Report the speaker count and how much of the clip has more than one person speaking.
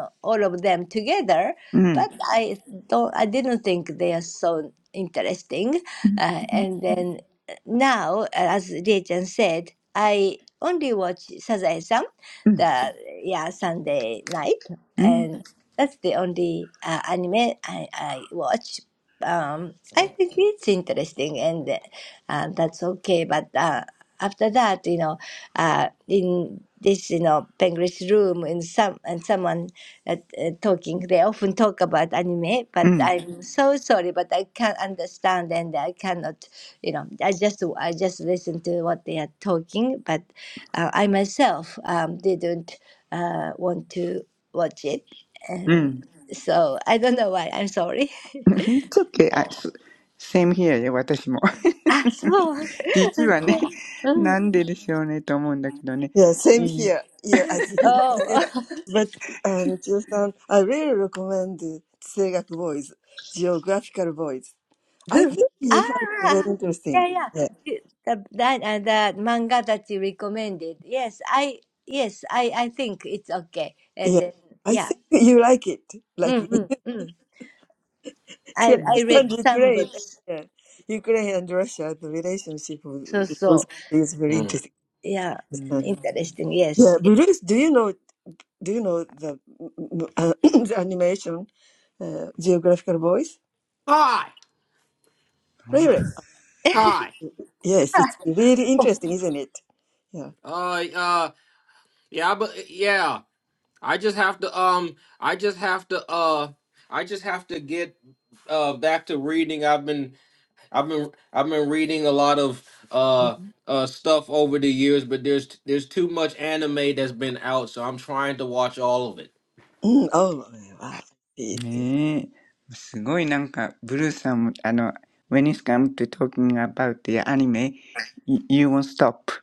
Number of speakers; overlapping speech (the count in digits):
4, about 5%